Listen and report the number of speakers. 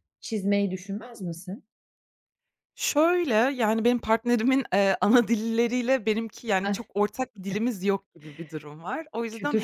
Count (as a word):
two